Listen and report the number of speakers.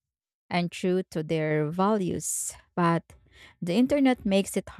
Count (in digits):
1